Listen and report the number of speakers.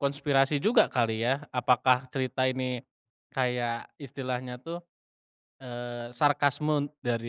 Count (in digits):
1